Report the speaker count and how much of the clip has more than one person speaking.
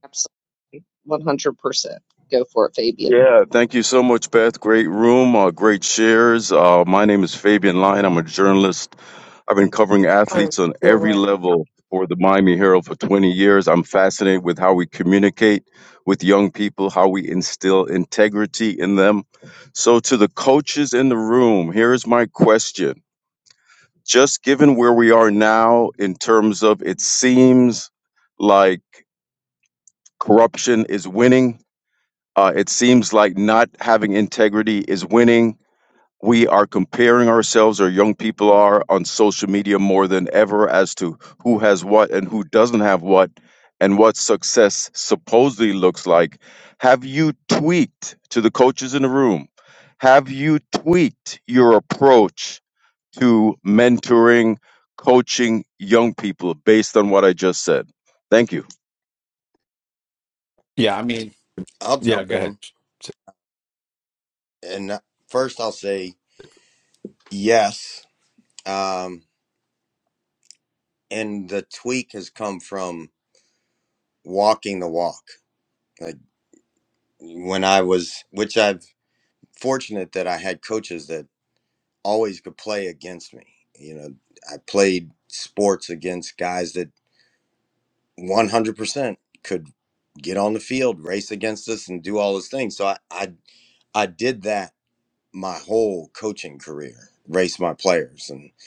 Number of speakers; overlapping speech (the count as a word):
four, about 1%